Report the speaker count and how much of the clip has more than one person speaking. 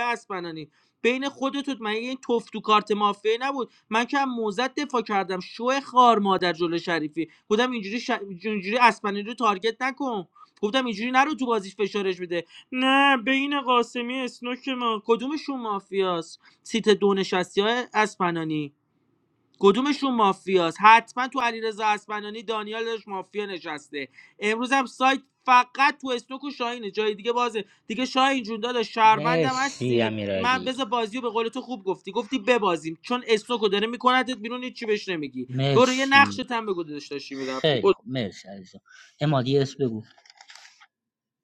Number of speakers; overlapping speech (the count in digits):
2, about 7%